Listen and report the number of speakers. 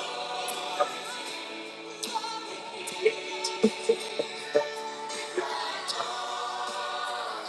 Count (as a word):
zero